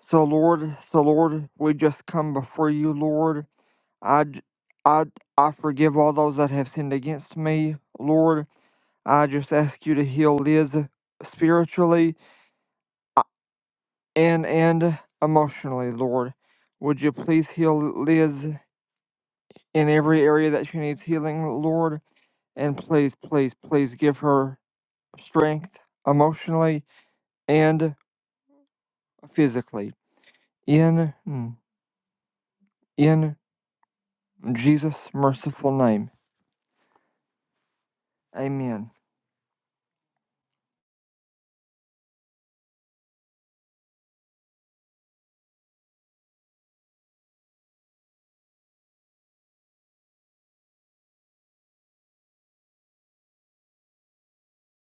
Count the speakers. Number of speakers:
1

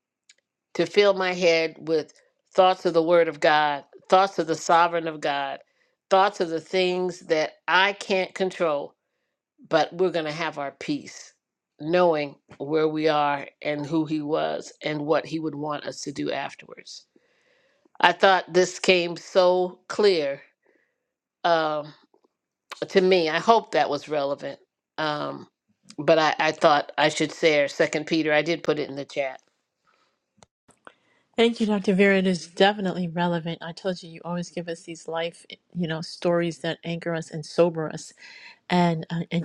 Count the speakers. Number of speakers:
2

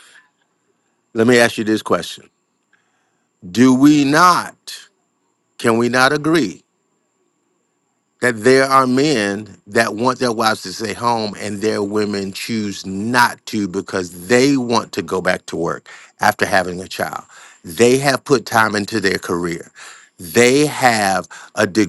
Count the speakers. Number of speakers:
1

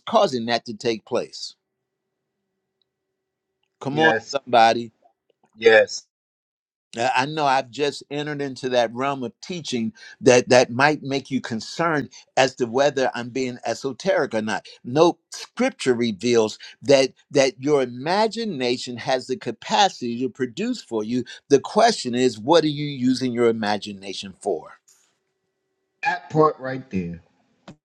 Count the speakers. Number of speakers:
2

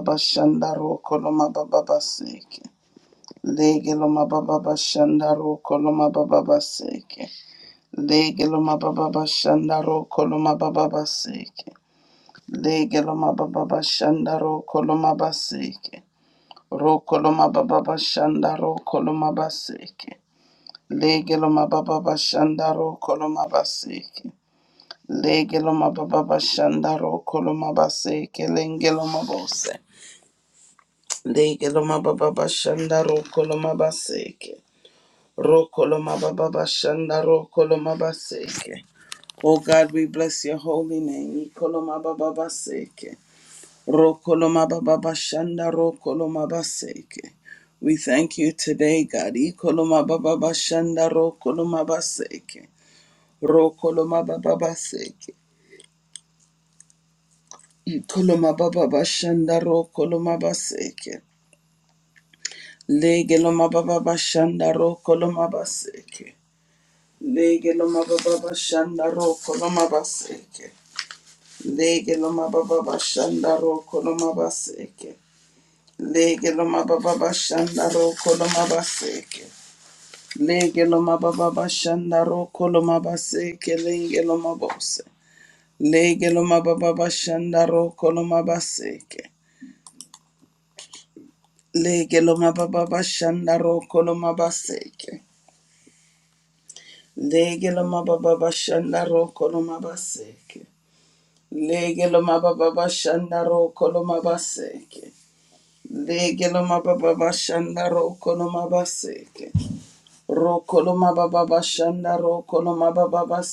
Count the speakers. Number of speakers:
1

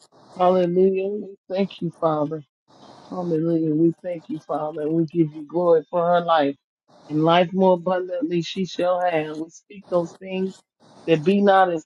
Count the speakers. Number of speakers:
1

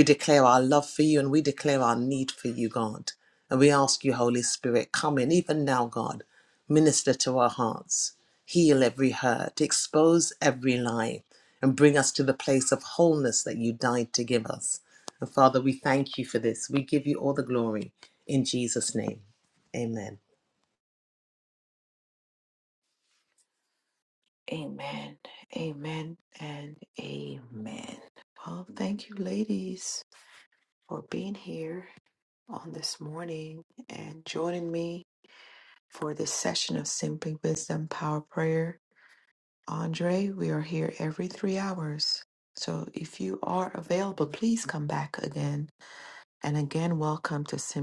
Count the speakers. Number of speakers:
2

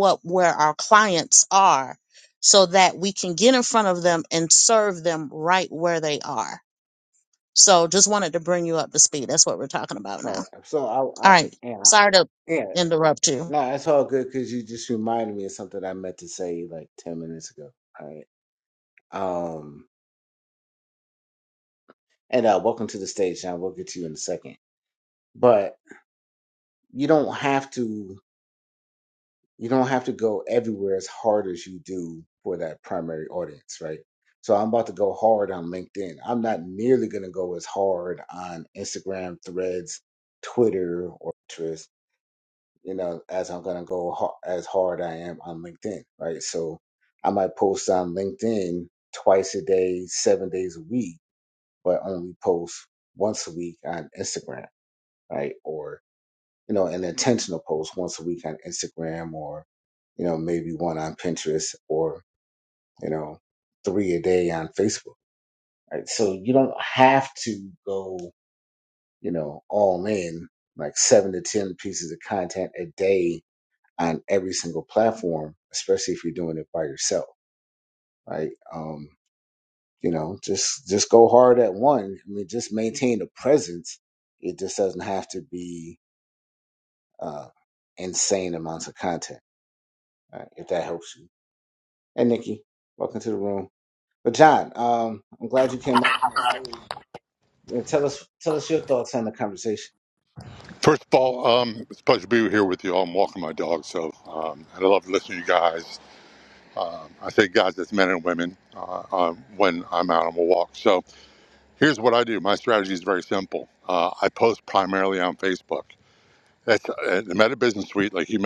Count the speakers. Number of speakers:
3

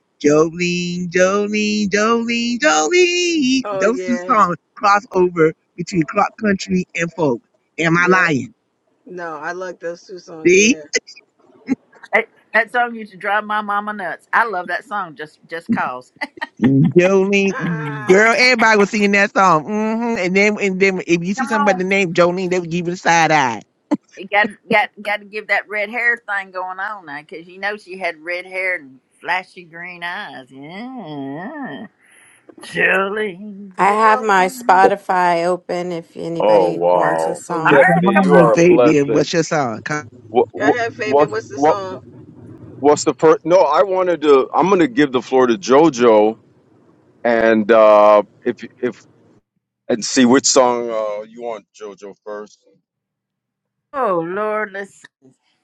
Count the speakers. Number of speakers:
5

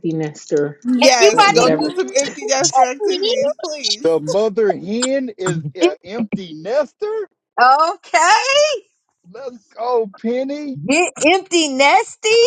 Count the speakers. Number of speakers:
4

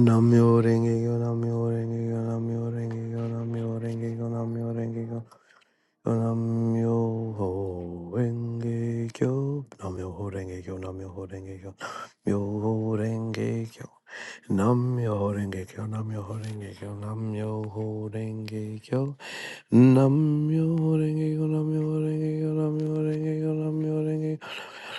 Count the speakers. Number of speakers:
1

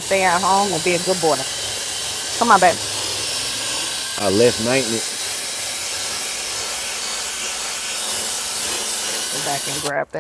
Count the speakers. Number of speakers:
2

